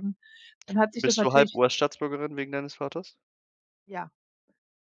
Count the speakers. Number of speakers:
2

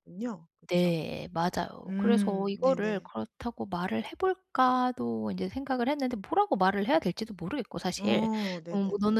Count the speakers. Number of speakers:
2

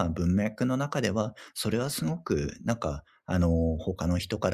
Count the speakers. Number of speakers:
1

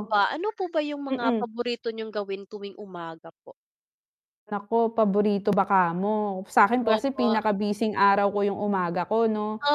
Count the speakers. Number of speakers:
2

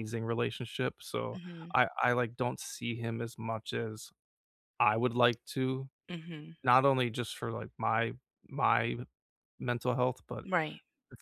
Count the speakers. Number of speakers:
2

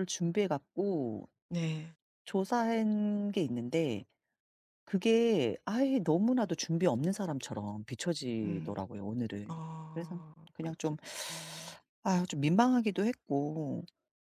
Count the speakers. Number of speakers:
2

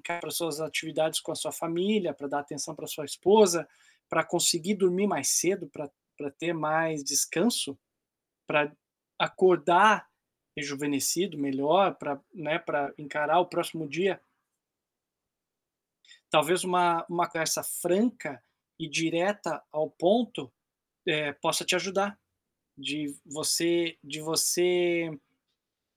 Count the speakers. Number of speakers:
1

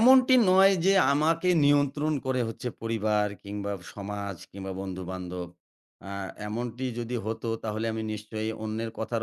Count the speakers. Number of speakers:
1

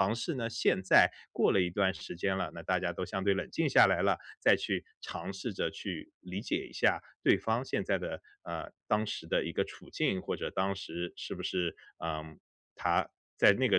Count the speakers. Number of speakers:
1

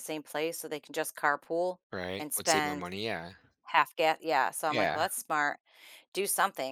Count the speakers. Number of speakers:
2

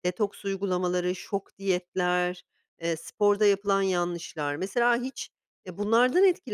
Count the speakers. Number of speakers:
1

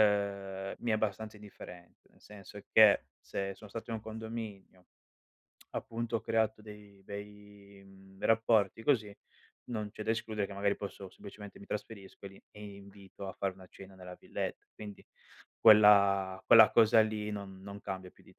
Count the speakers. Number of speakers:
1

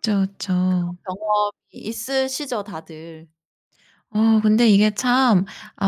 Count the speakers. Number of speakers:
2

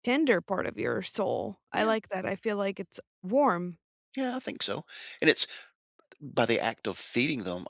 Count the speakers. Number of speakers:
2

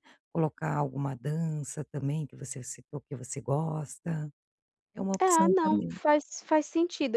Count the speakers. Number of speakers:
2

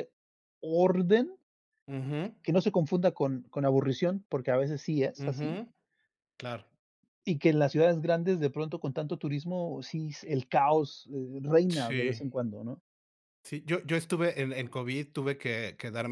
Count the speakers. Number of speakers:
2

